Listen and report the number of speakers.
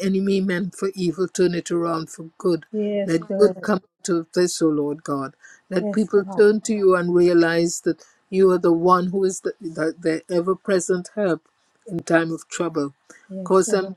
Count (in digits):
2